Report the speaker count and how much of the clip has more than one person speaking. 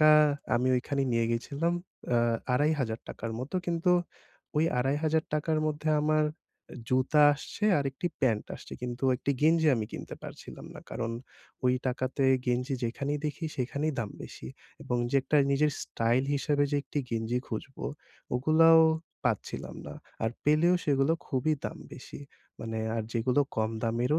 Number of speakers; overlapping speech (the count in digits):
1, no overlap